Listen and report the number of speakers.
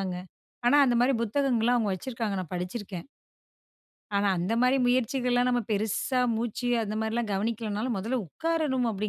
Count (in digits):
1